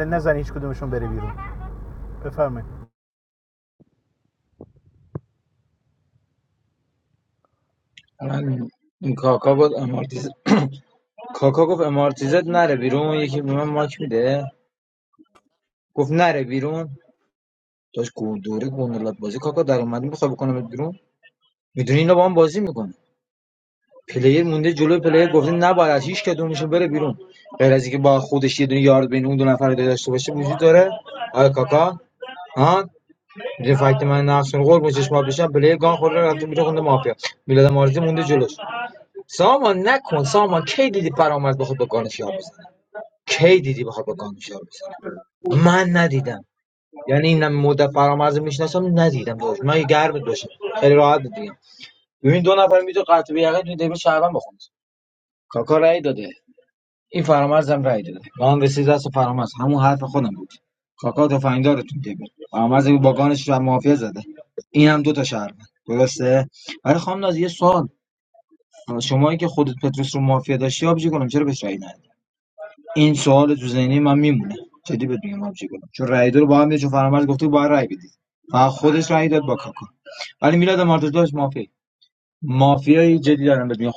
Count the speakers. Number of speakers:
2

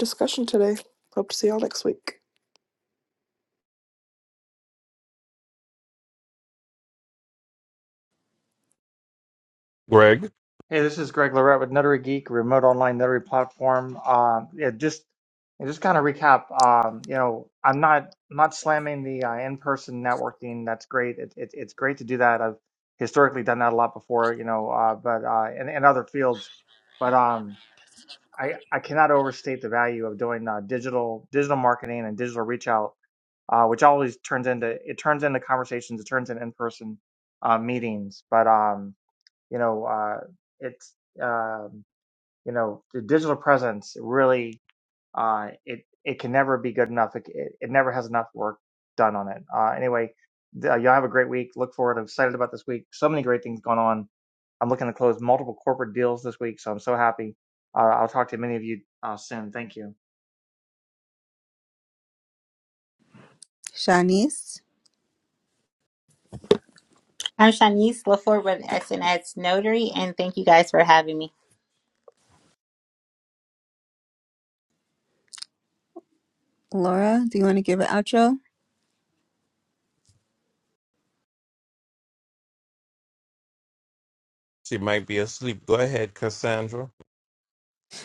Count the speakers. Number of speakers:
5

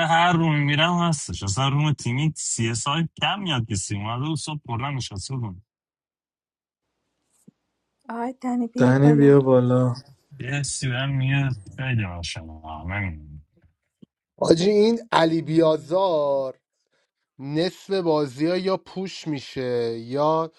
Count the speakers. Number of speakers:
4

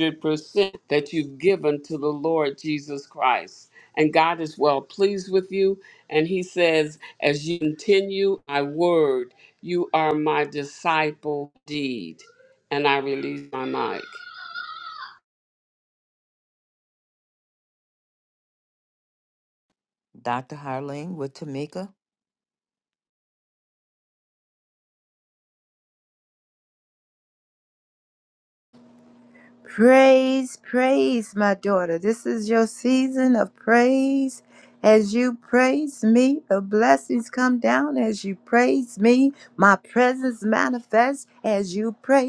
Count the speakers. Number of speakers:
3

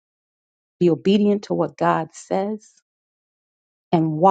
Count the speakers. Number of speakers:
1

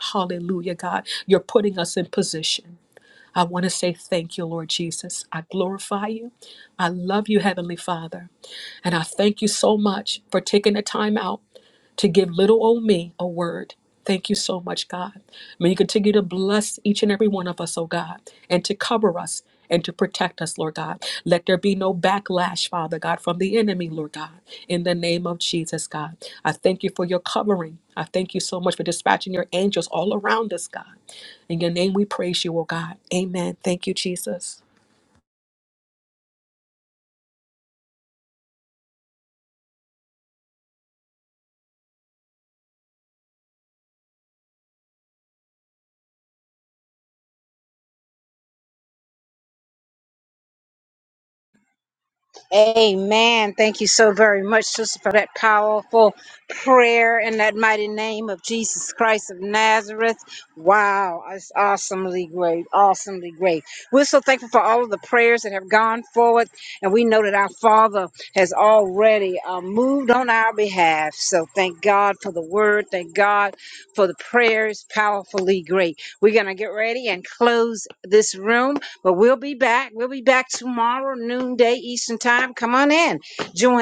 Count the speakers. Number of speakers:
2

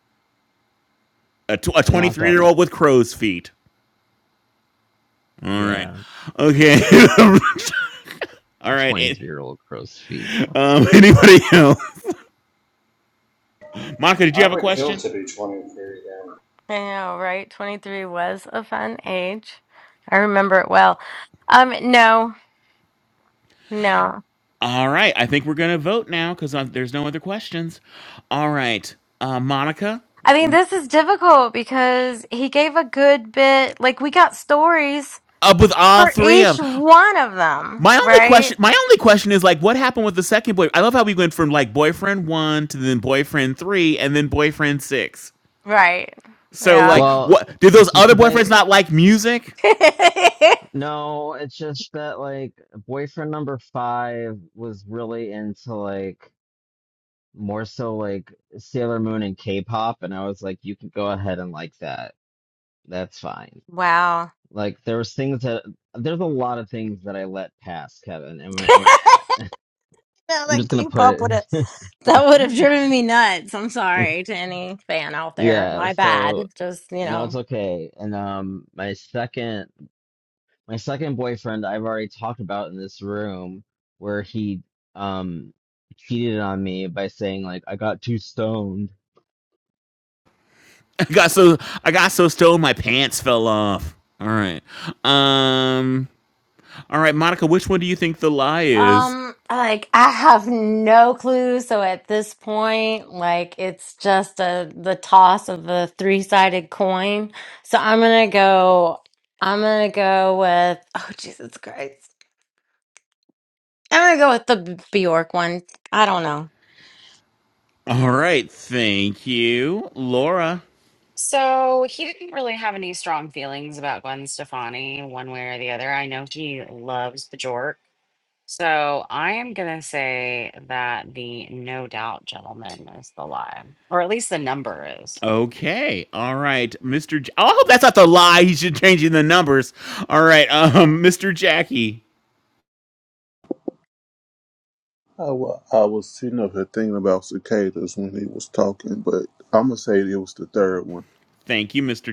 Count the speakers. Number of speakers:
6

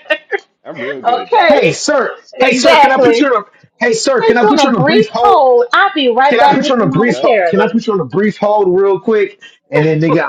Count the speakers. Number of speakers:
3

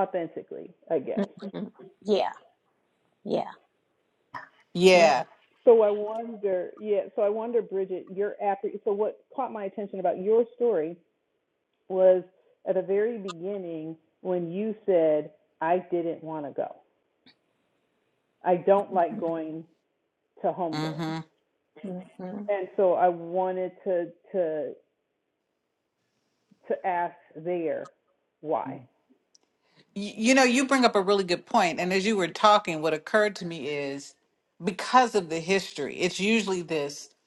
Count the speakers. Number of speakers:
3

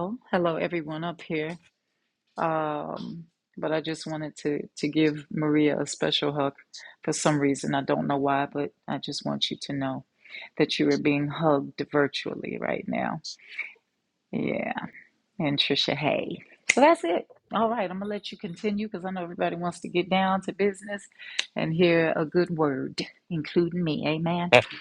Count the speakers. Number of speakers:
1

